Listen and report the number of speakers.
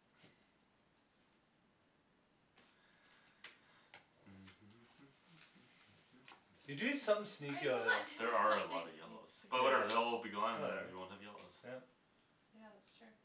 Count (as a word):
three